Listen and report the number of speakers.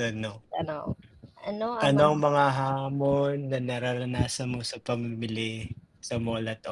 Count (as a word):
two